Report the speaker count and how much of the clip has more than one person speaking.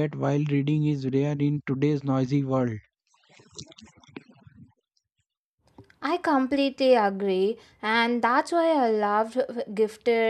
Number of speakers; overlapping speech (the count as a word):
two, no overlap